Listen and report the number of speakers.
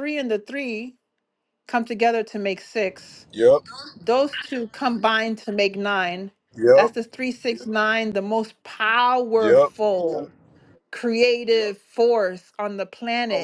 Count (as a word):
two